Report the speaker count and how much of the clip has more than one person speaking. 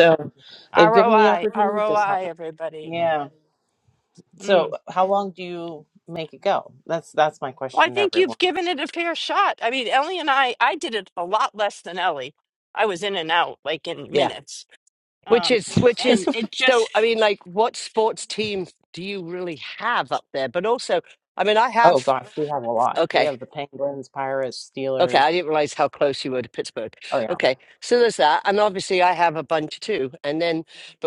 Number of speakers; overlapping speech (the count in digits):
3, about 14%